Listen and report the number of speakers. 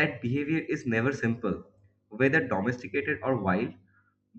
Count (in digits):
1